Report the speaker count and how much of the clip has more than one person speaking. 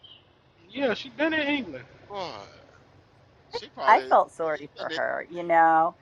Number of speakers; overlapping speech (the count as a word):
three, about 9%